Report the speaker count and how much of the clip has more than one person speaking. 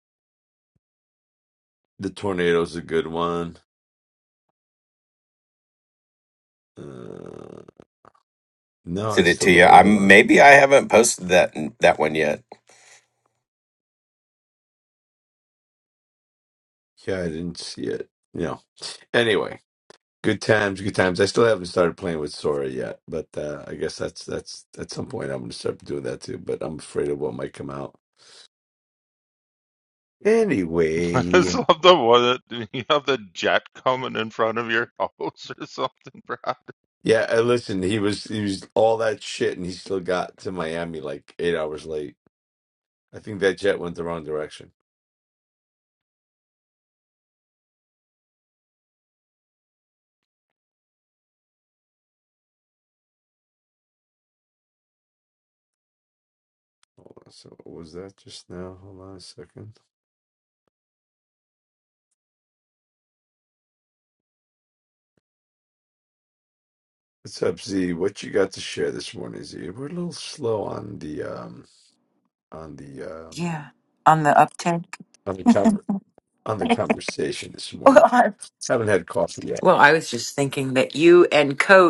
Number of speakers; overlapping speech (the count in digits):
4, about 2%